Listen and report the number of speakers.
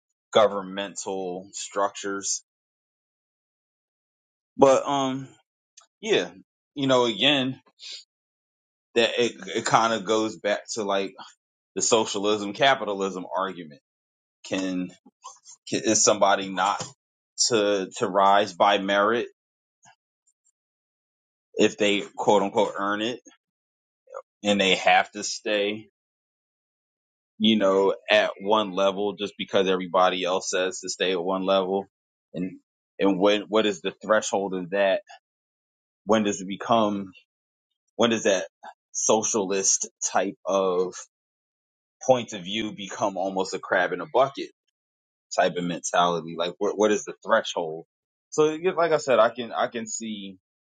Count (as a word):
one